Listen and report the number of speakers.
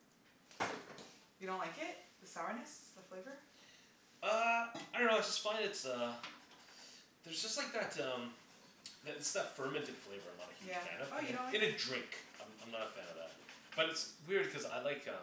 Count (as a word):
two